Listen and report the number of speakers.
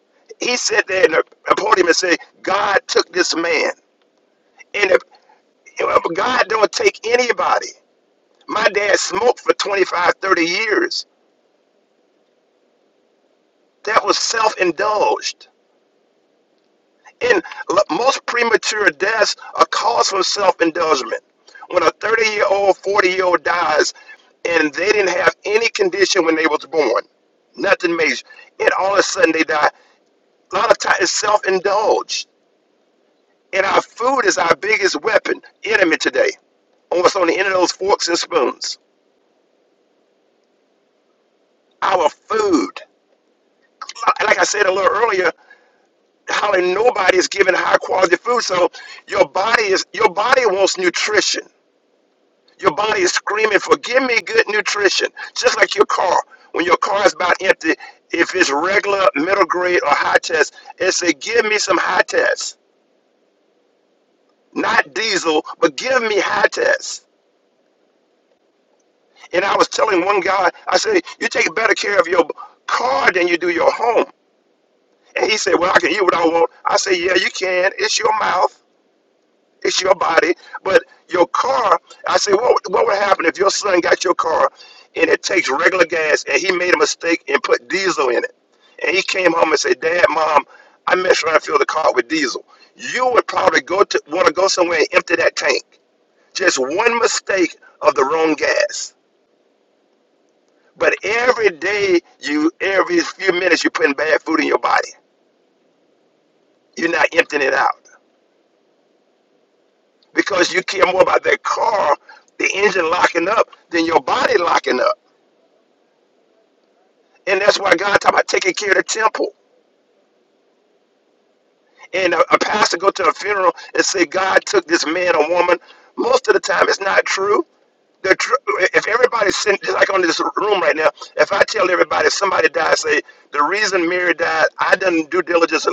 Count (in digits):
1